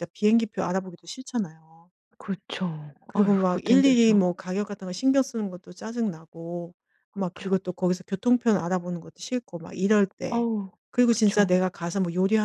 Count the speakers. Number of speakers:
two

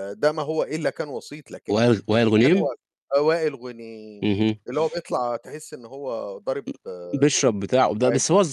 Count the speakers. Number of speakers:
two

